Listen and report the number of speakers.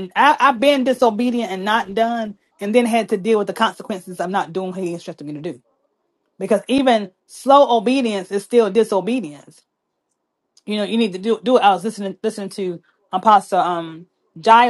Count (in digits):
1